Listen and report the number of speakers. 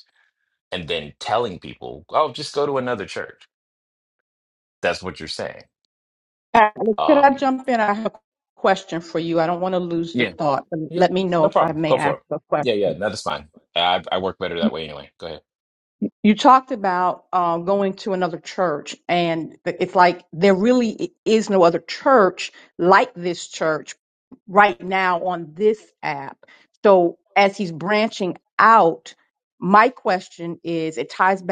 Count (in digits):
2